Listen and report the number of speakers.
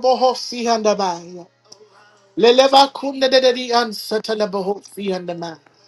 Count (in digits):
1